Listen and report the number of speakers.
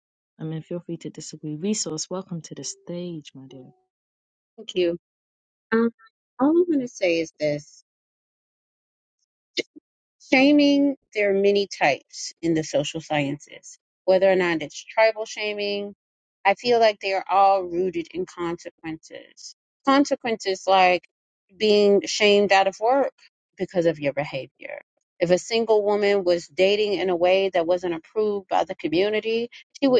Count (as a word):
two